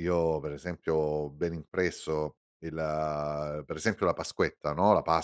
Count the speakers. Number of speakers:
one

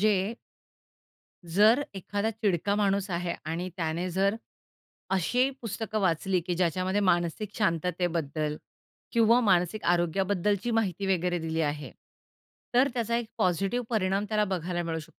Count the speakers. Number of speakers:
one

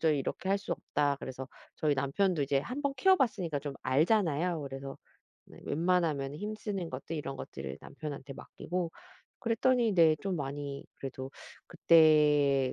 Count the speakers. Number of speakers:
one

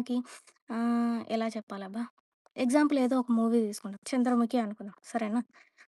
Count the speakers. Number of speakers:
one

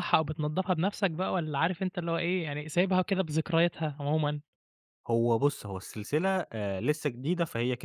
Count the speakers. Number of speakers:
two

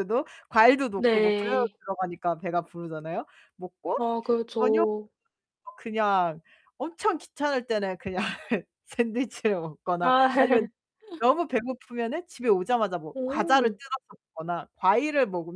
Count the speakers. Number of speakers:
two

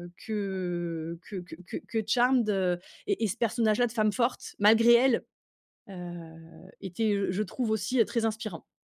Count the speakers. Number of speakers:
one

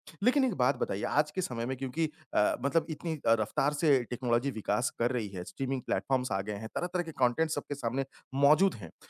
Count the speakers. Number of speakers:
one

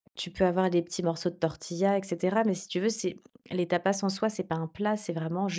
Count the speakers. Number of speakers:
one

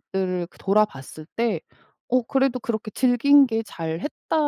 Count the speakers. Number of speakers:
one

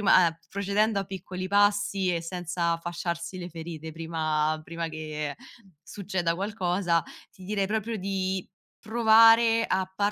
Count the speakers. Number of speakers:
one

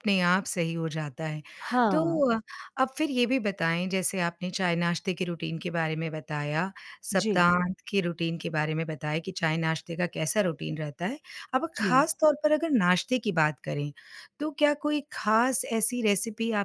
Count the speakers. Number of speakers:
two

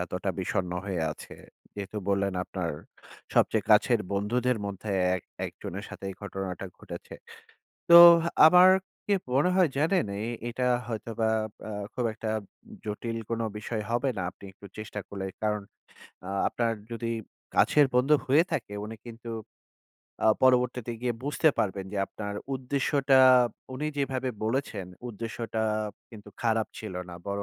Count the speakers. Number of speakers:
one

